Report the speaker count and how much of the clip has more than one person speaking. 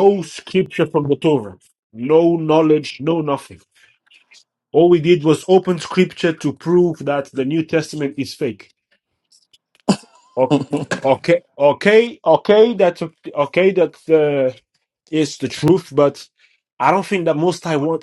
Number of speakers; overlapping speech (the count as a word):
one, no overlap